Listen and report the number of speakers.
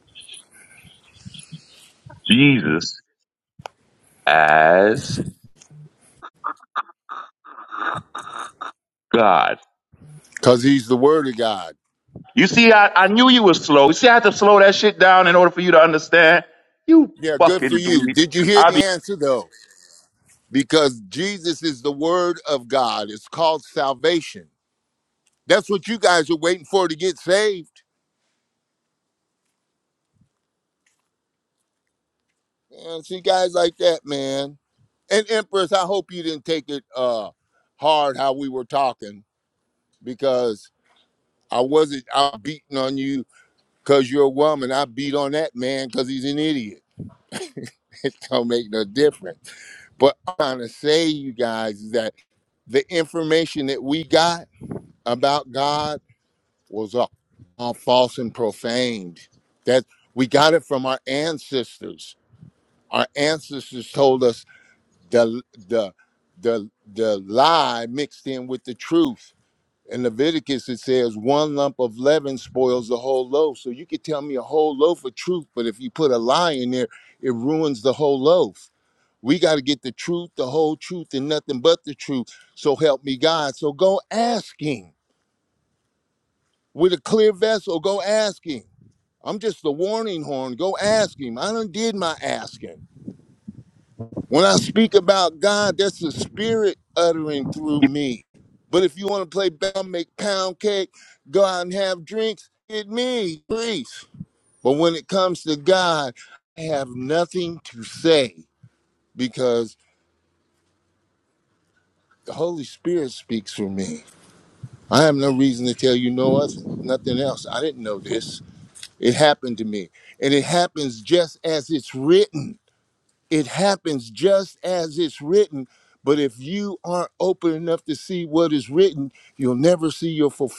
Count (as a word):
two